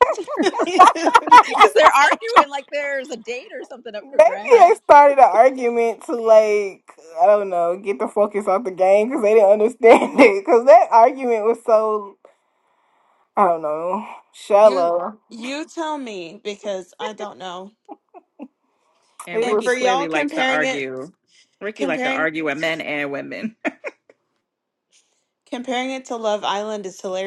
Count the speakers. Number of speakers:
4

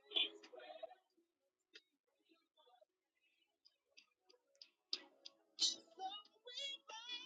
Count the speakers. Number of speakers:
0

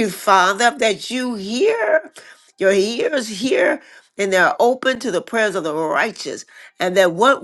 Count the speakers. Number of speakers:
1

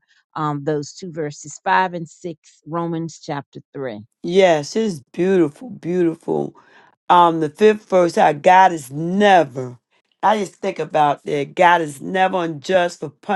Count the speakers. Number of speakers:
2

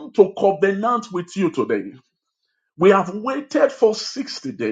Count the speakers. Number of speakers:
1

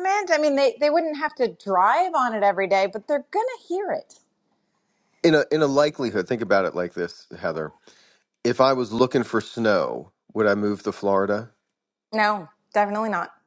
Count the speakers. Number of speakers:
2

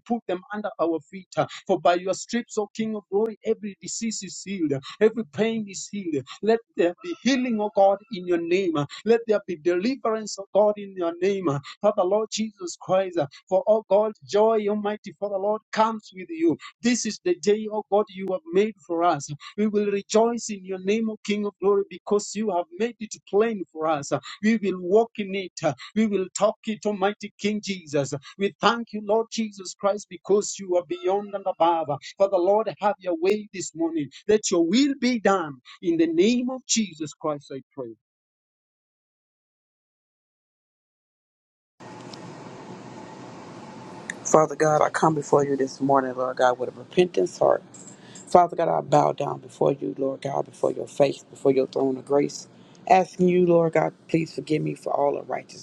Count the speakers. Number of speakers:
2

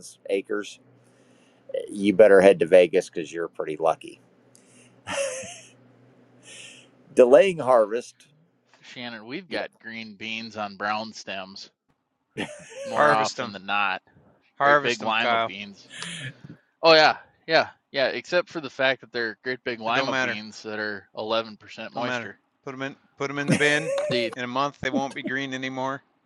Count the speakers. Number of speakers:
3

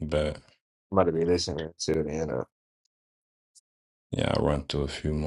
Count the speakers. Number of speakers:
2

